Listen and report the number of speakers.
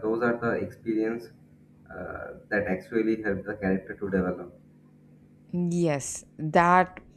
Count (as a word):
two